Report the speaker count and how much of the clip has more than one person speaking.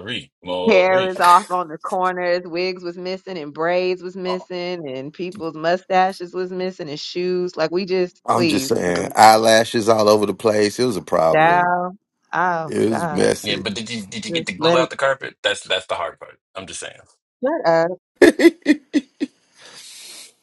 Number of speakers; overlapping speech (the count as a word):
three, about 15%